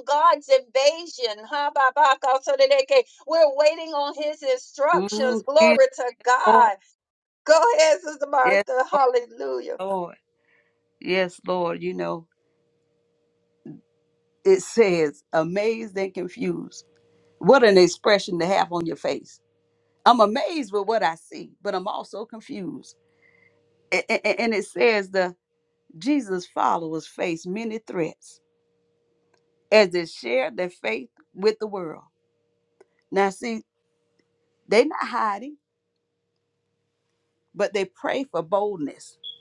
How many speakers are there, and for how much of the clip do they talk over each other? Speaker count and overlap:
2, about 3%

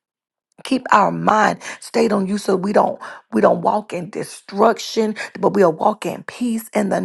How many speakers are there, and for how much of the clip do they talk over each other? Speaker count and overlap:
1, no overlap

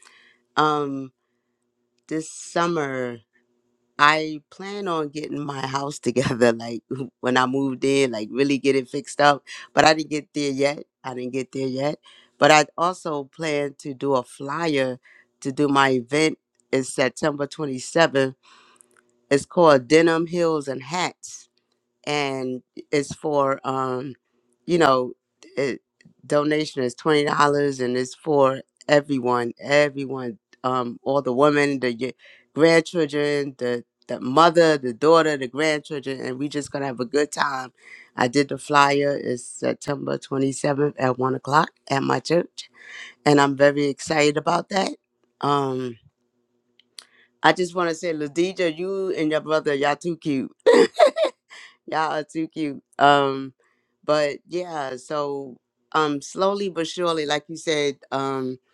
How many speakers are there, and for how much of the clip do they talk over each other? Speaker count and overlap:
1, no overlap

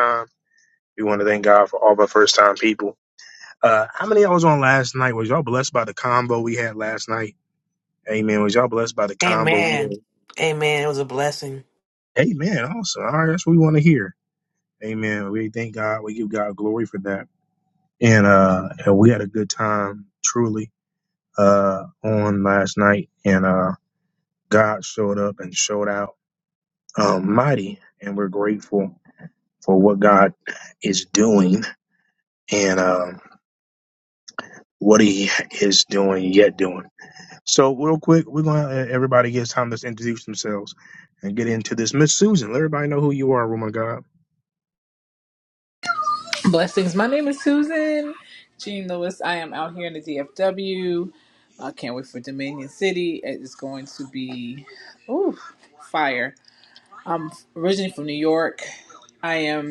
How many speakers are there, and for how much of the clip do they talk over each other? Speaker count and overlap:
3, about 1%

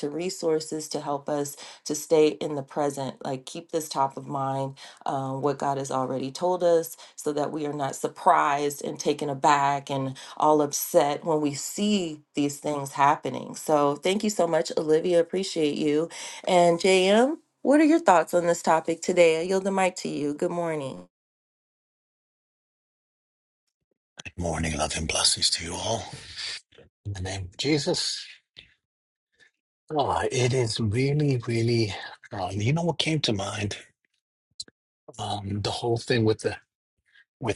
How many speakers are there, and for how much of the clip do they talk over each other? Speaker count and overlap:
2, no overlap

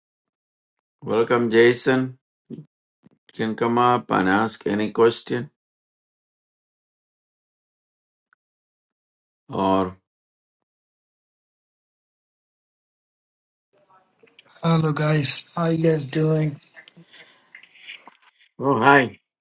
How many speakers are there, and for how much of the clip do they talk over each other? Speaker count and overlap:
2, no overlap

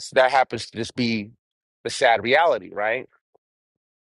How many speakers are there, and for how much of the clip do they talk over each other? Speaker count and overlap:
1, no overlap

